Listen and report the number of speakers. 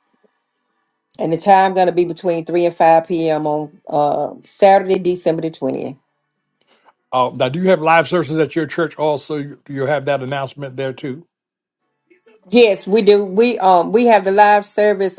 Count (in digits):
2